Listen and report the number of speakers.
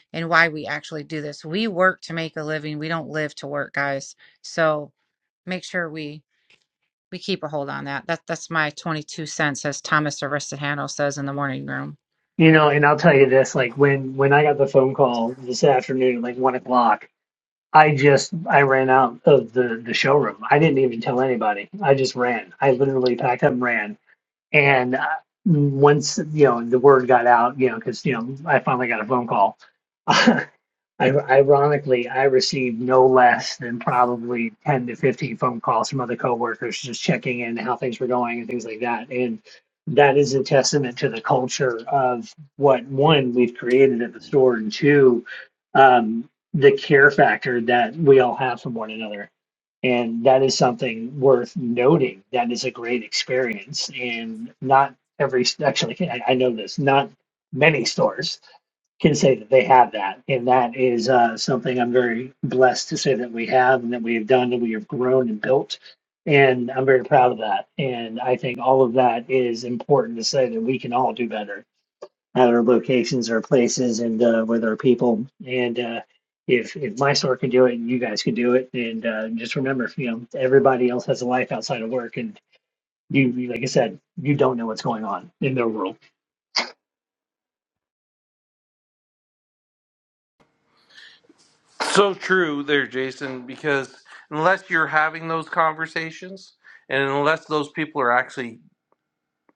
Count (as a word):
three